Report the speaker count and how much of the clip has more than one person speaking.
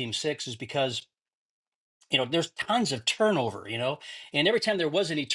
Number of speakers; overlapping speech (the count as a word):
one, no overlap